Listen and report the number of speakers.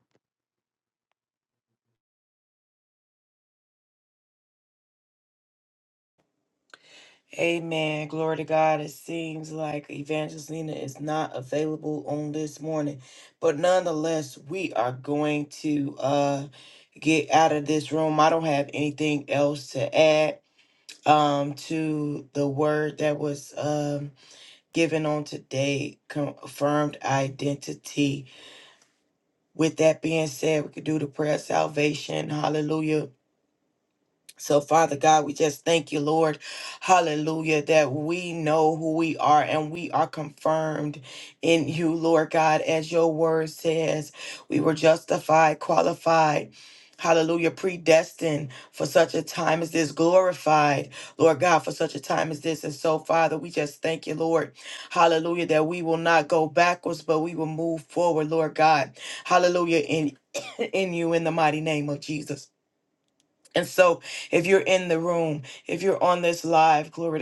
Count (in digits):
1